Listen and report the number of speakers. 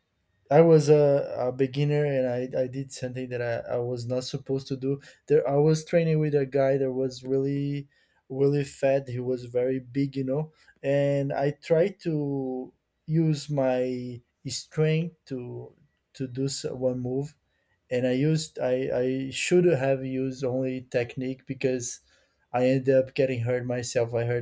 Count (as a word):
one